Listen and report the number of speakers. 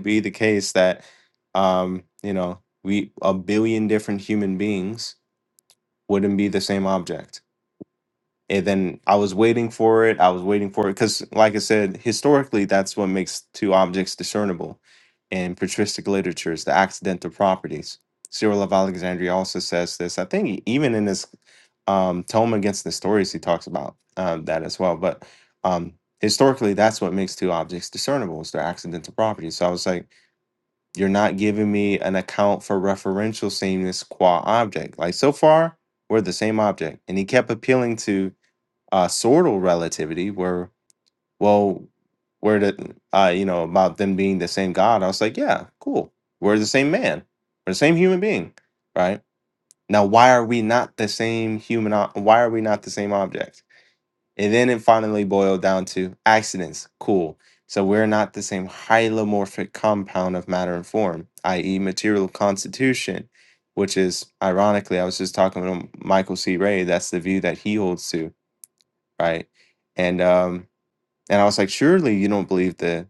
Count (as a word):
one